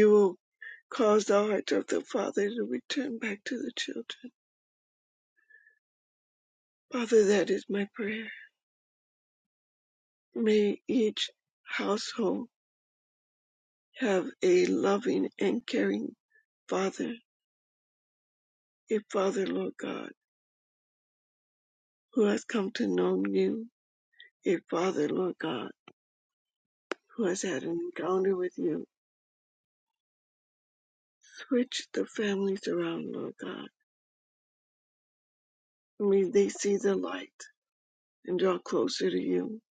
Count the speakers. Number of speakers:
one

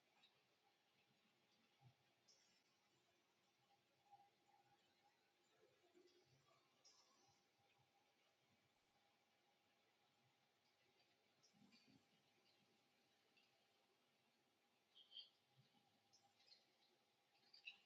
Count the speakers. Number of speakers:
zero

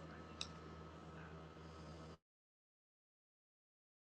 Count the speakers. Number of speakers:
zero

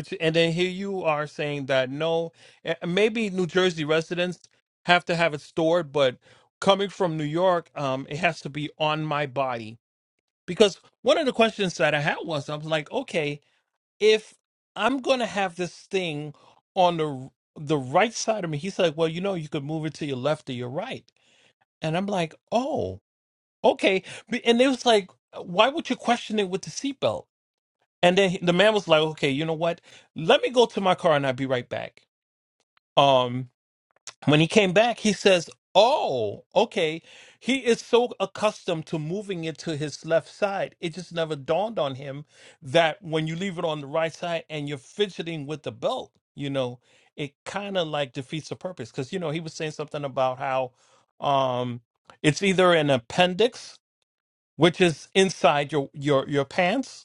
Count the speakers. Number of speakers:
one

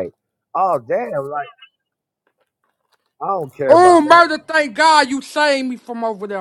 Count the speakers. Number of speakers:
two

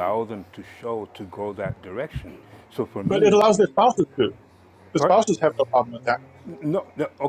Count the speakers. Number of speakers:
two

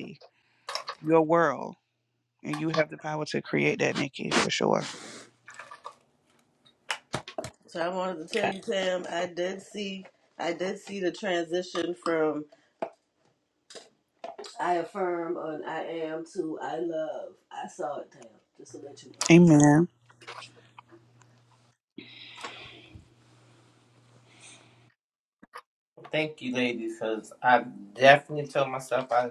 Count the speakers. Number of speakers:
three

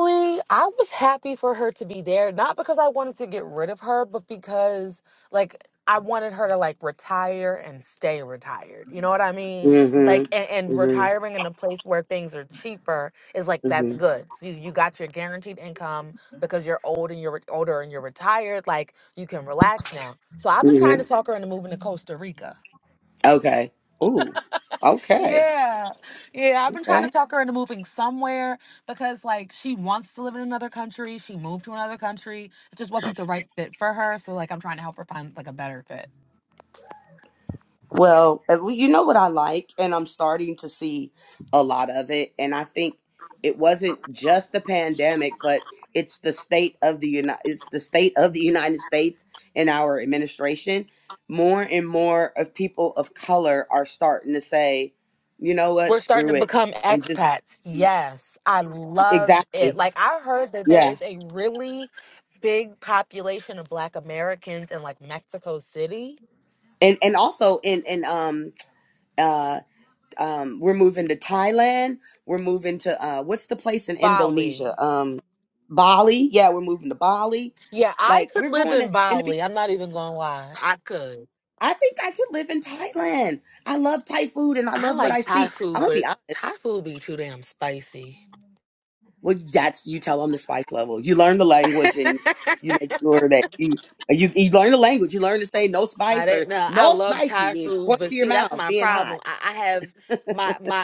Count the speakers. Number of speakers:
two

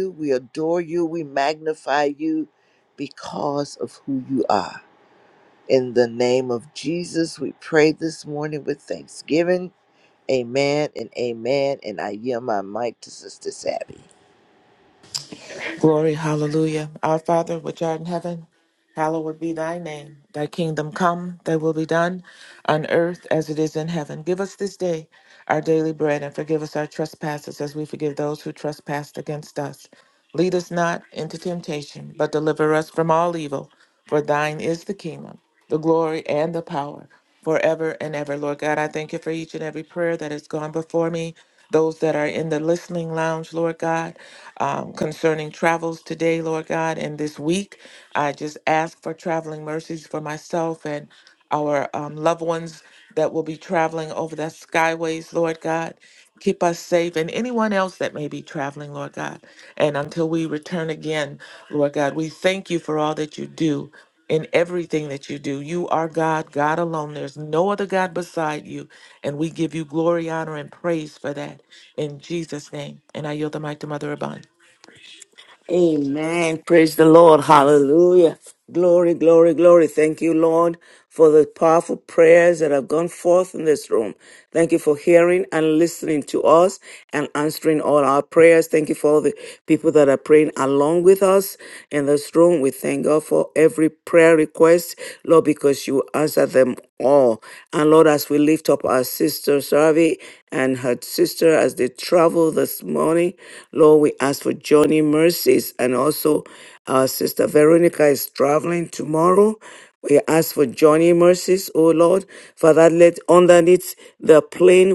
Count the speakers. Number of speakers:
three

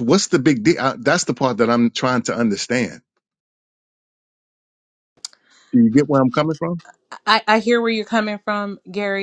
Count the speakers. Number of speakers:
two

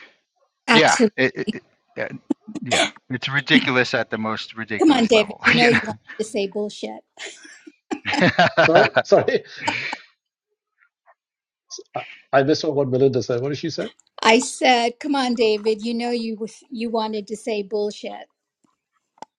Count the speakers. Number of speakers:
three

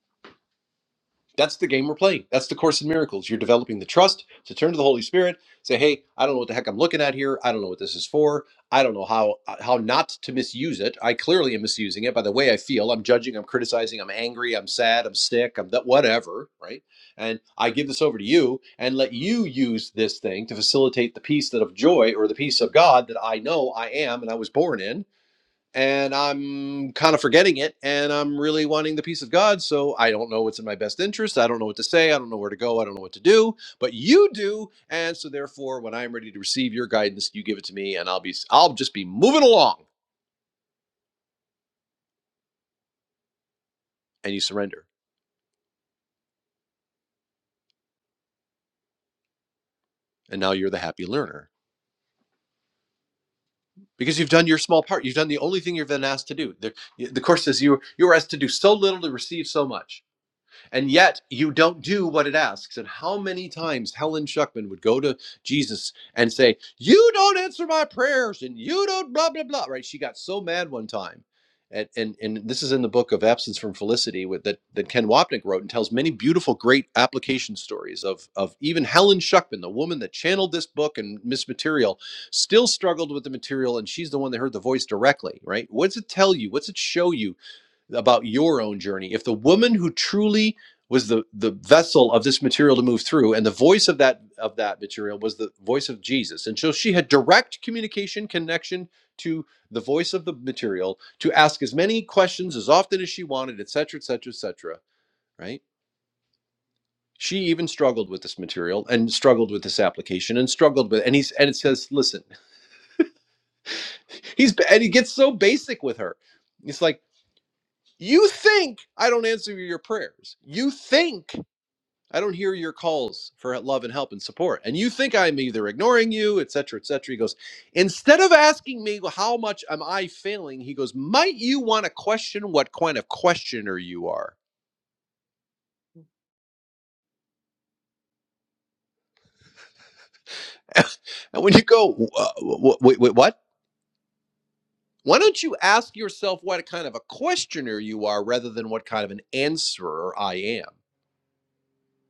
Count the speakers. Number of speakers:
one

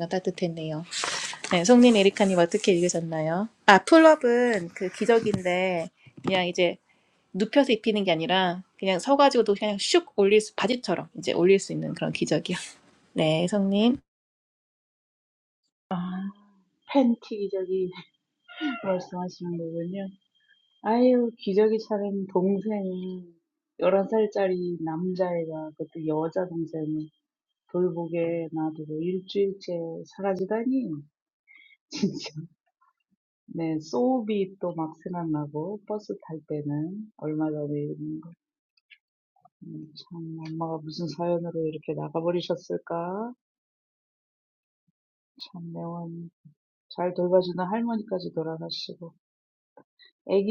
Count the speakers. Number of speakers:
two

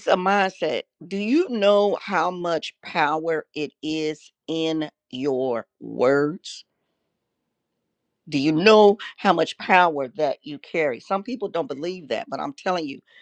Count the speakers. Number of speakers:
one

